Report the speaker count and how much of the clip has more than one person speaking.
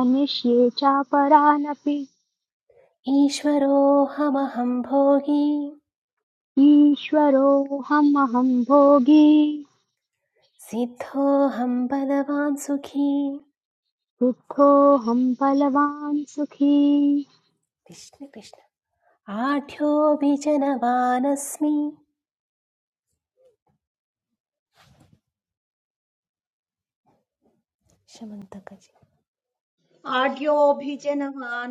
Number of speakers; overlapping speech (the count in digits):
3, no overlap